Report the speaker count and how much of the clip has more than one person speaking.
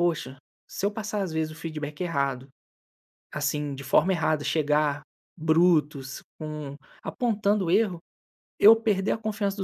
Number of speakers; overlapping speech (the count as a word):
one, no overlap